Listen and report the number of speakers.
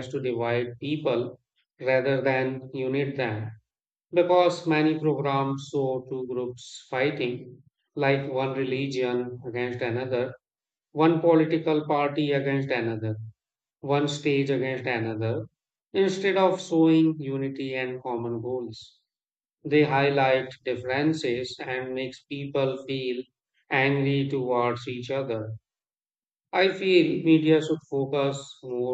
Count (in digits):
1